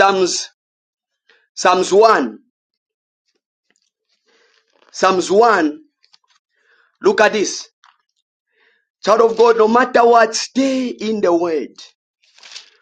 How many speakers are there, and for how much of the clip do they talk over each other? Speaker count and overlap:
1, no overlap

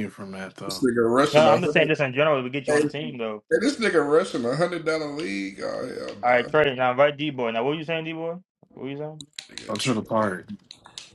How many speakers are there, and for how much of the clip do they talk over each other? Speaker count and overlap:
3, about 15%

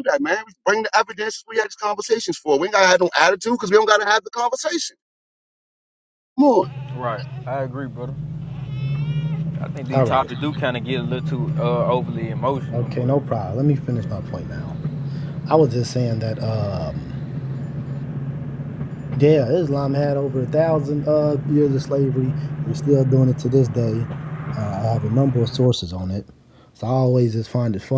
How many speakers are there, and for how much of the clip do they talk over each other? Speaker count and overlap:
3, about 3%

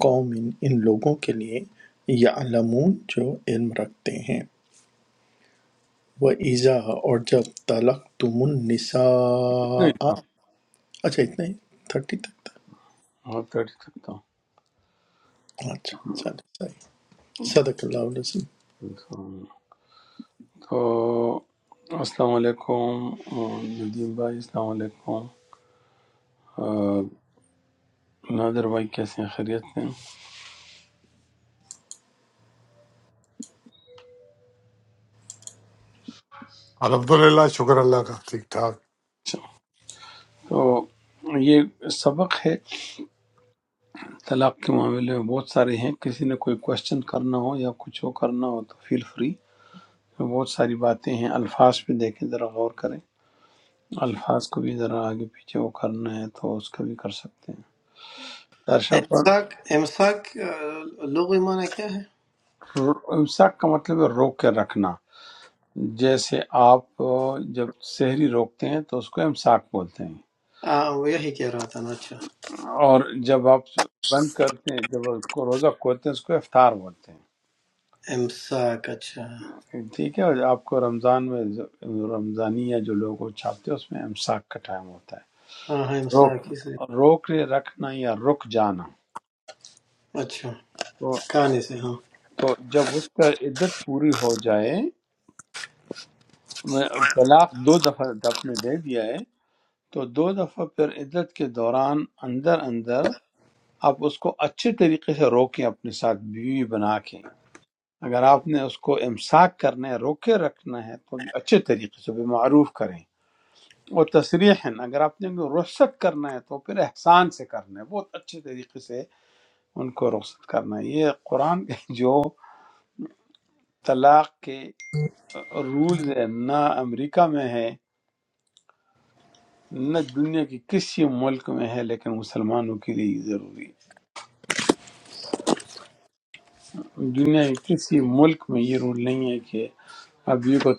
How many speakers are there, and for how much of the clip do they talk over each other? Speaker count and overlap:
4, under 1%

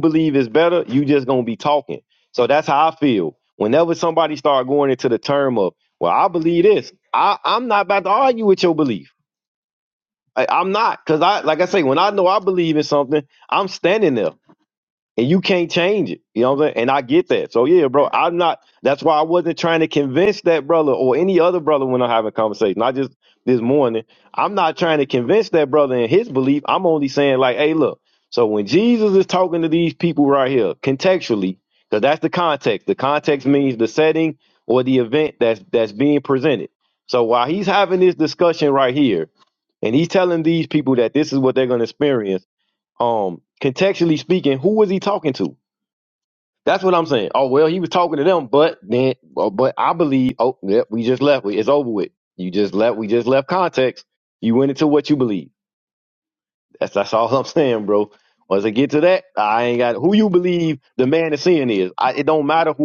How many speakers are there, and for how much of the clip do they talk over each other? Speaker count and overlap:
1, no overlap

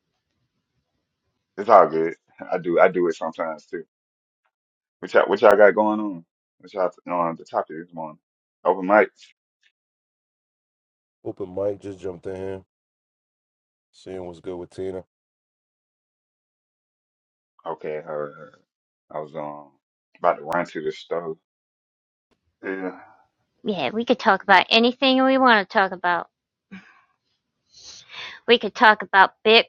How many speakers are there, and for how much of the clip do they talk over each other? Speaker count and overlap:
3, no overlap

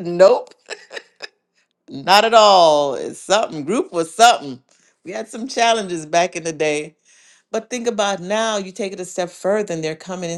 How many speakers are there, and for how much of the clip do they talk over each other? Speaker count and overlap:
1, no overlap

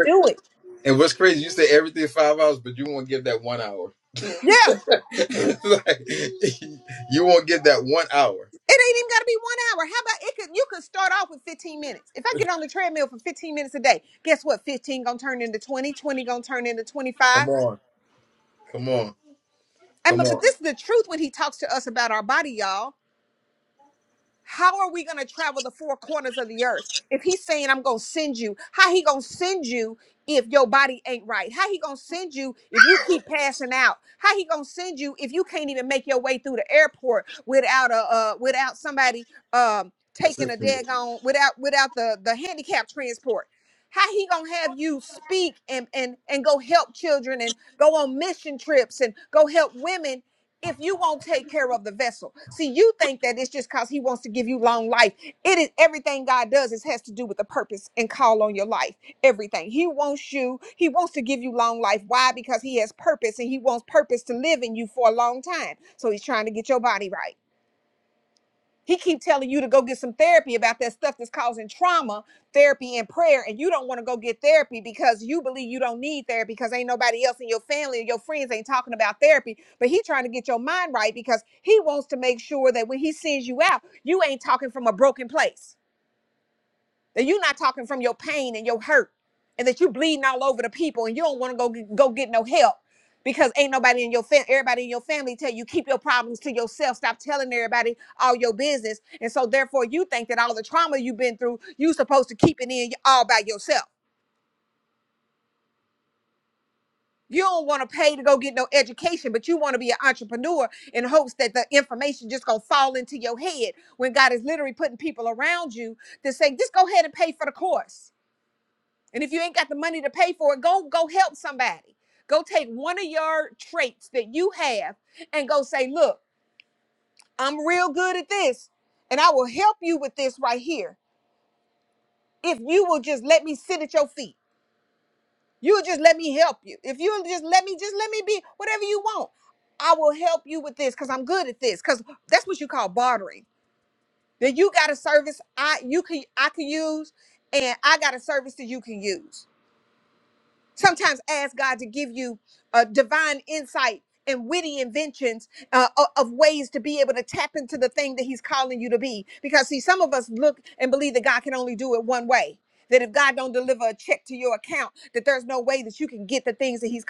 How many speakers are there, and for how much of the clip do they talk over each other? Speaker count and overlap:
2, about 1%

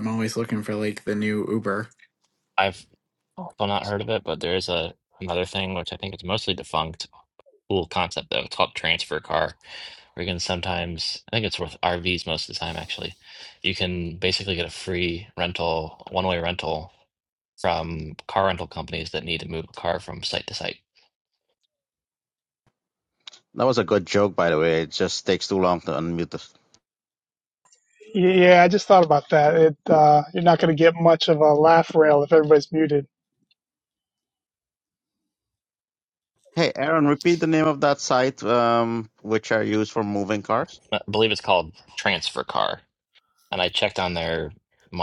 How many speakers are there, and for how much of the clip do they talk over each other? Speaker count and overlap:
4, no overlap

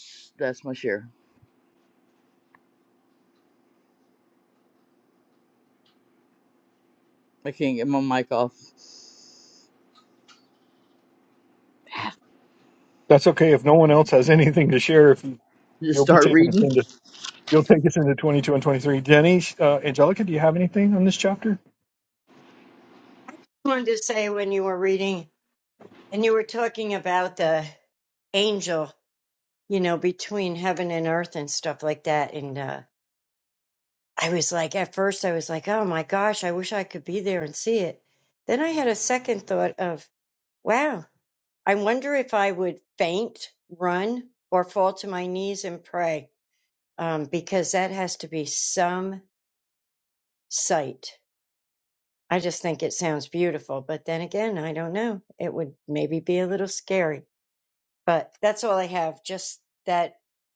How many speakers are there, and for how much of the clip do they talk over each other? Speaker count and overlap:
3, about 1%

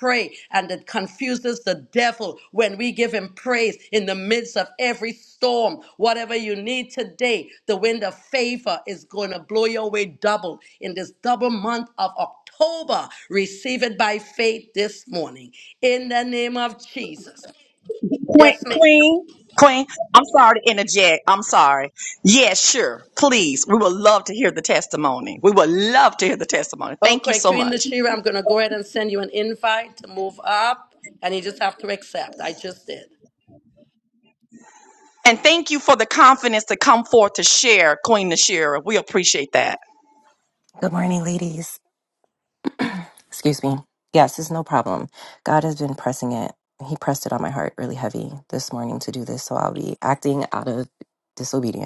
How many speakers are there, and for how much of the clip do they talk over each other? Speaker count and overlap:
3, about 2%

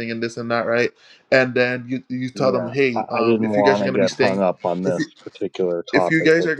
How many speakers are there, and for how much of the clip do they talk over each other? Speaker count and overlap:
2, about 45%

